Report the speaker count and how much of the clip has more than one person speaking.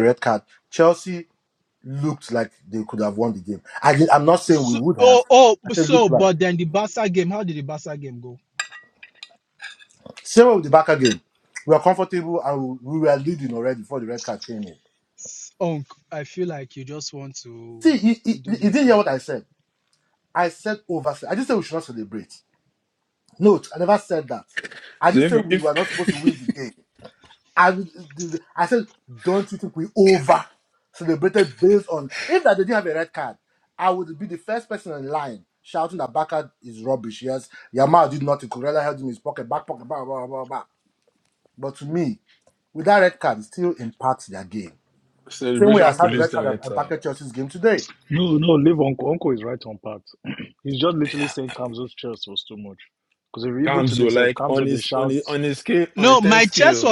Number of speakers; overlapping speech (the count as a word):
four, about 11%